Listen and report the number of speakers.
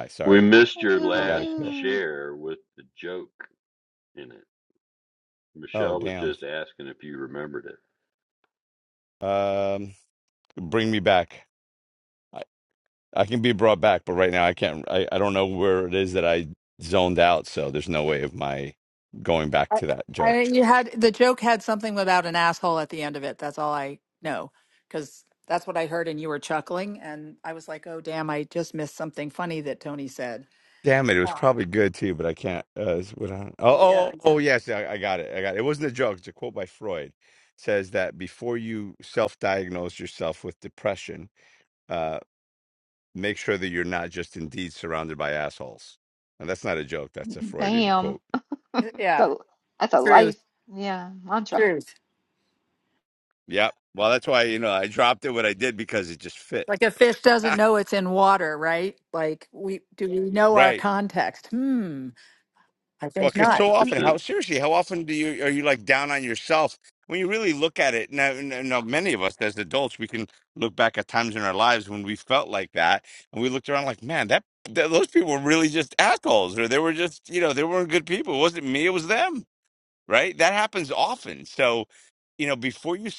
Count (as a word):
four